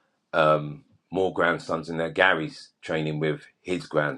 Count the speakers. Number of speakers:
one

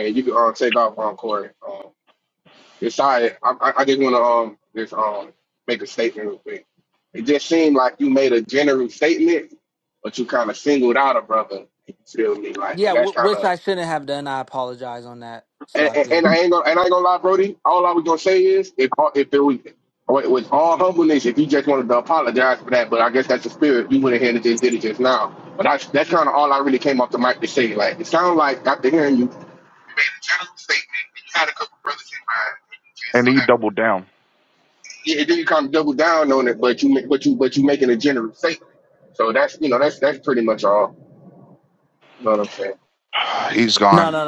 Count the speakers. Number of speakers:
three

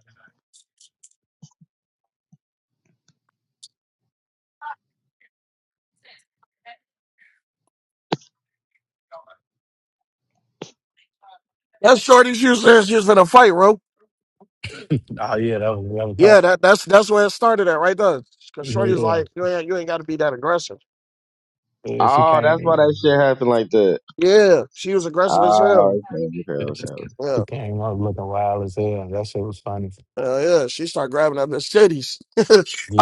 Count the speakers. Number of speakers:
three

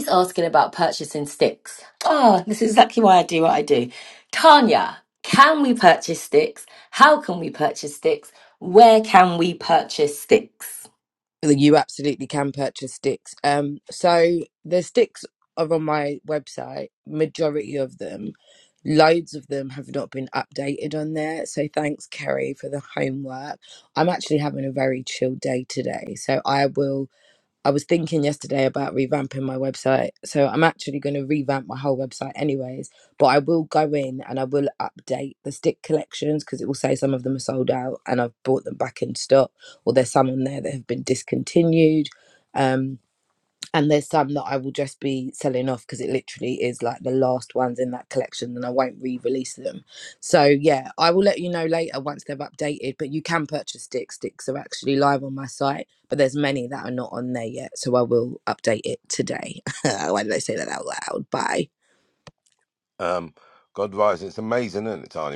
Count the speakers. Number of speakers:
three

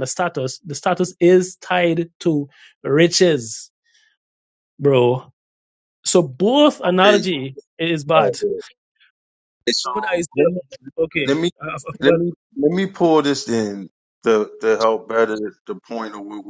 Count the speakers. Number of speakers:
two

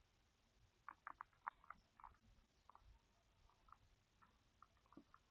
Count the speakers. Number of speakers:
zero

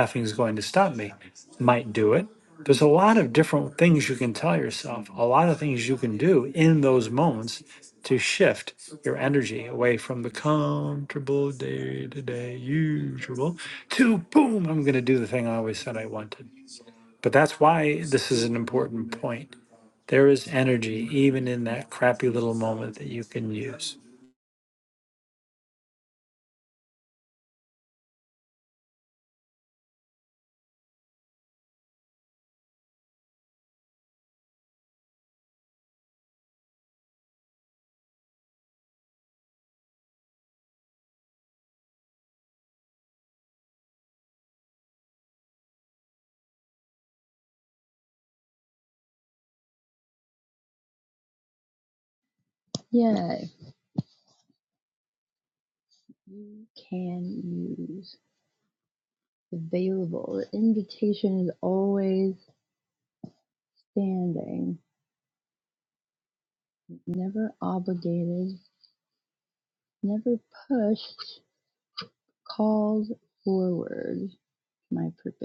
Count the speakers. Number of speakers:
two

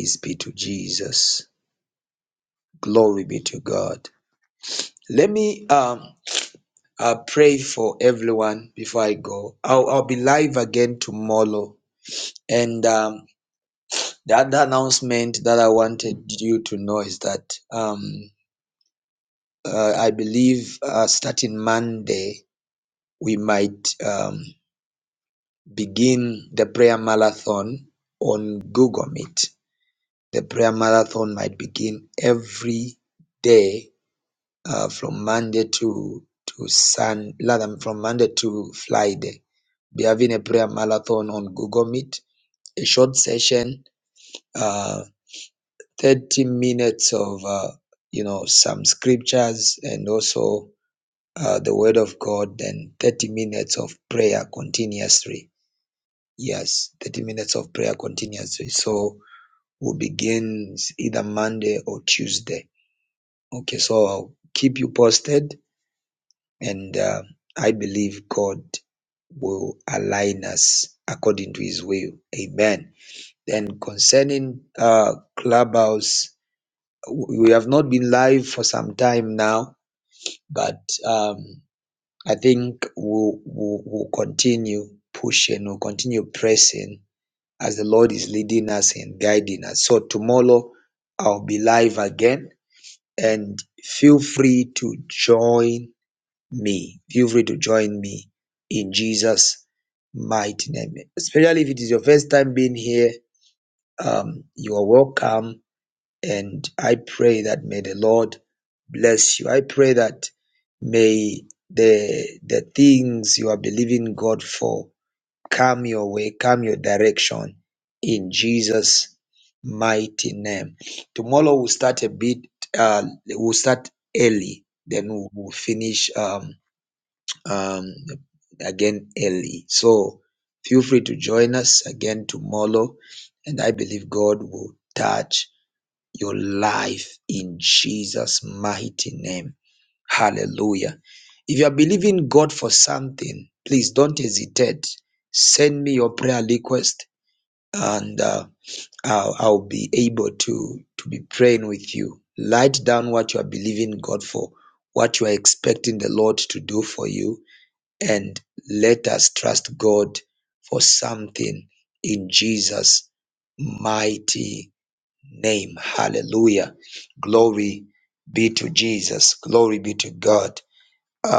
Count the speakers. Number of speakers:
one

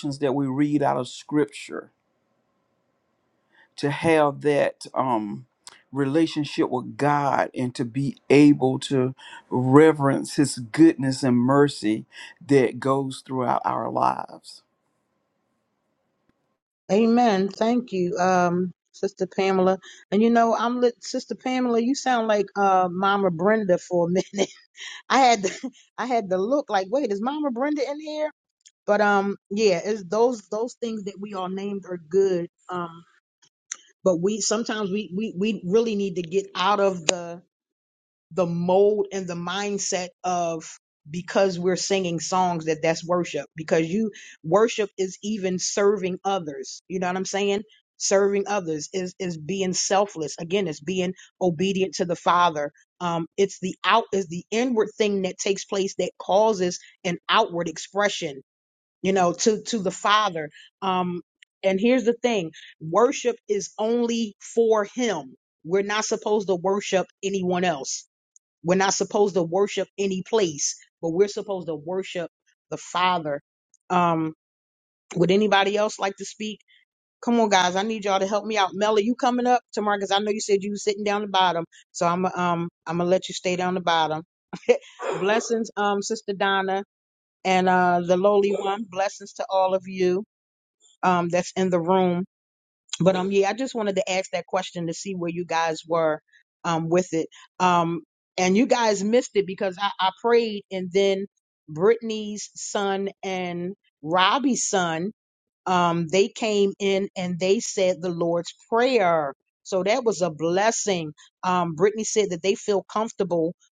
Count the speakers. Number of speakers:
two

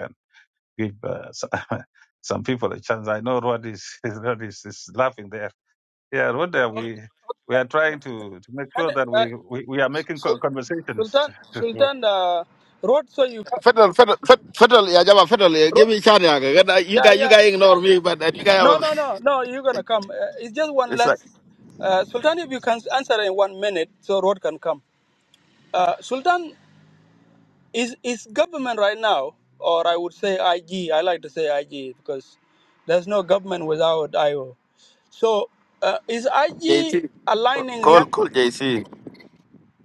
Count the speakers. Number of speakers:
three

